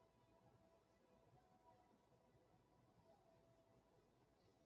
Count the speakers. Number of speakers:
0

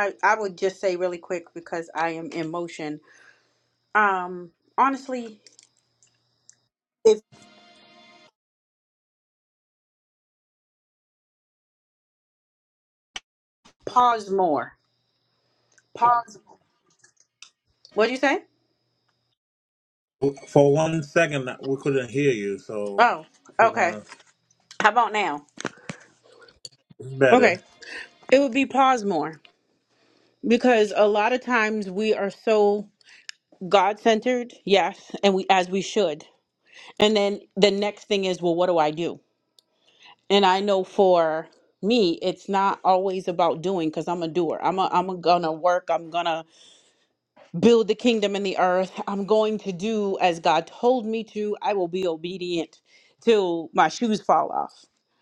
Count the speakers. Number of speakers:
2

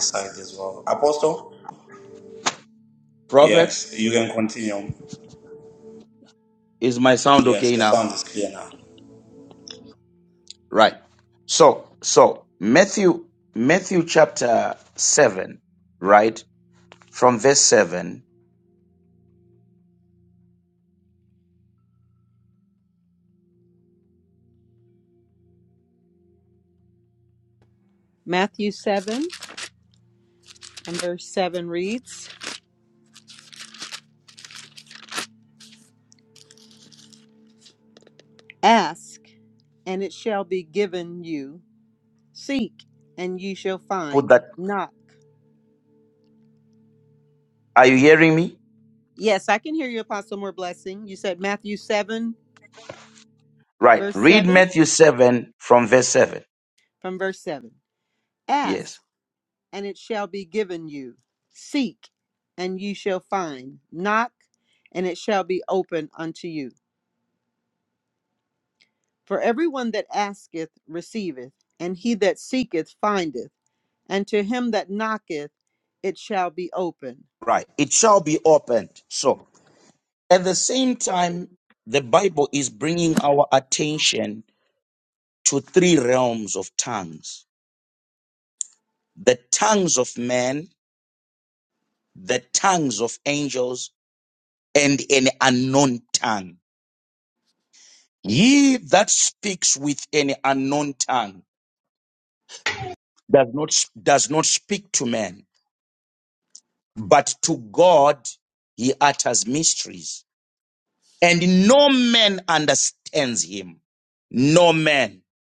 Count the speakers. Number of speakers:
3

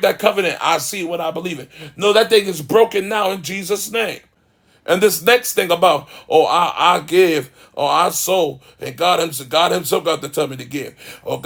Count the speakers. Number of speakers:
1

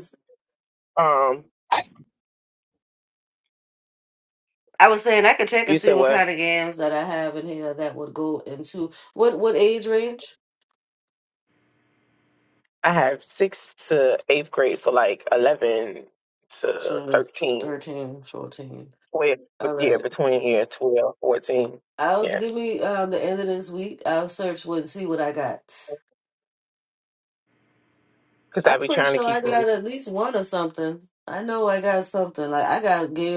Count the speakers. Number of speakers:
2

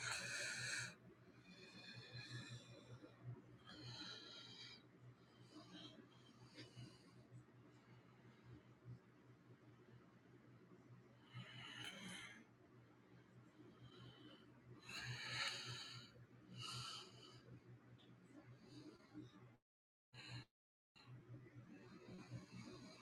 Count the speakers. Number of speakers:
0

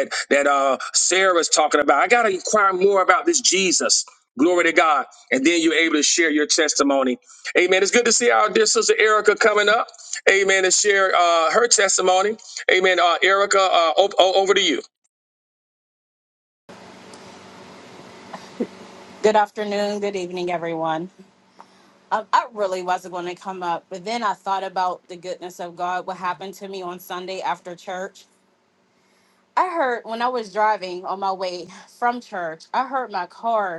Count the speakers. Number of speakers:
2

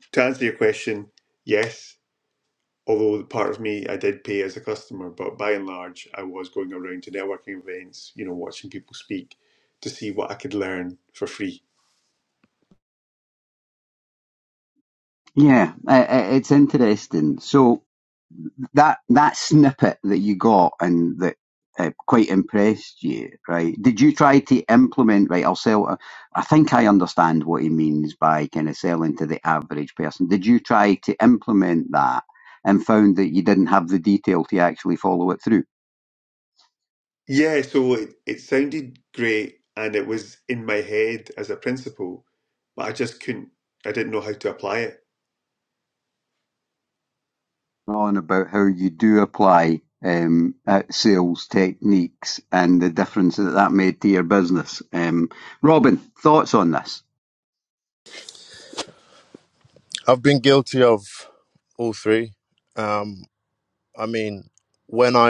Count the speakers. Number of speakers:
3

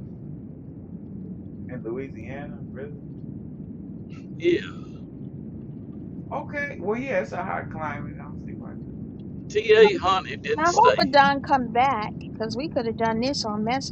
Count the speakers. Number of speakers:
3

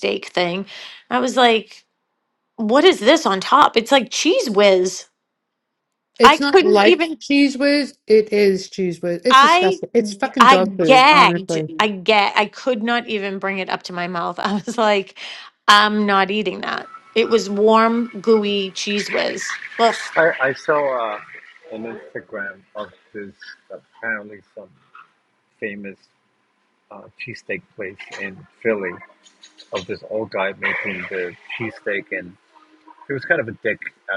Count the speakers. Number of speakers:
3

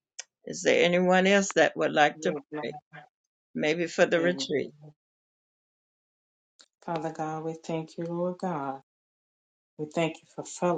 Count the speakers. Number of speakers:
2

